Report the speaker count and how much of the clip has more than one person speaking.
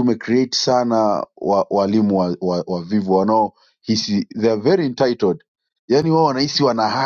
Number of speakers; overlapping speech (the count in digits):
1, no overlap